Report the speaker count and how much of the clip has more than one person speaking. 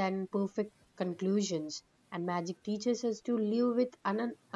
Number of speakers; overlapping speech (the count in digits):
1, no overlap